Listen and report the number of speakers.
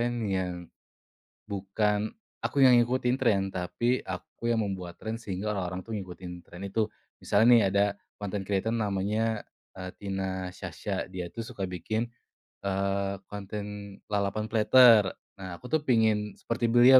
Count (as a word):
one